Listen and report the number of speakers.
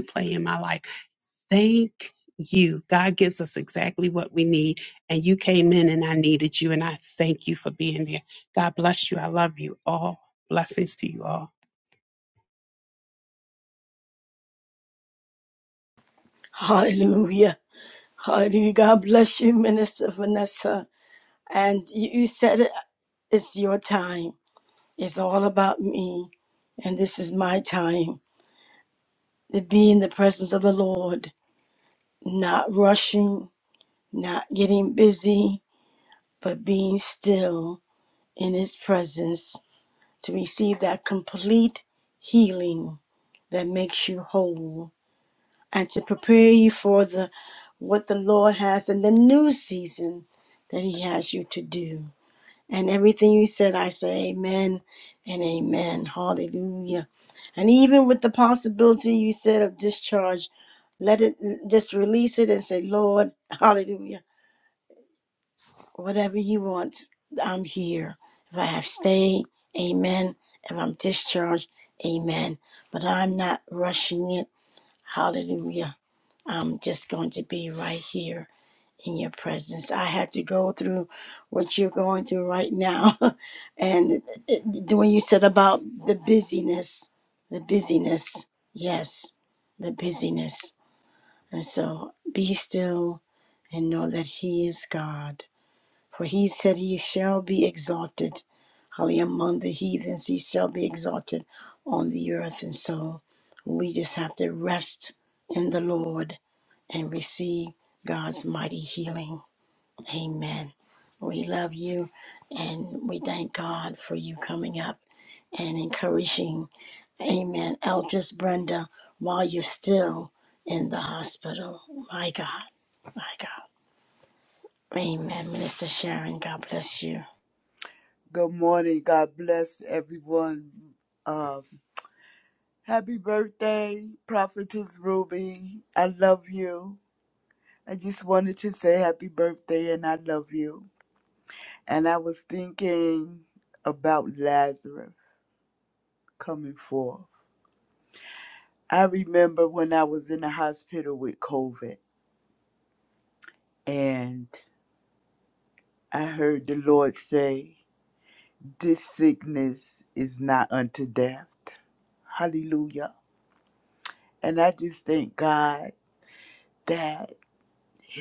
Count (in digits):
3